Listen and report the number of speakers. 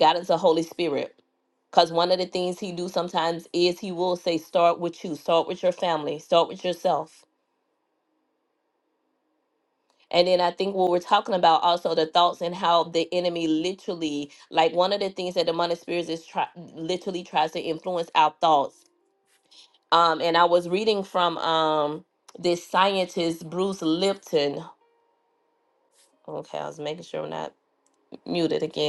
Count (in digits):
1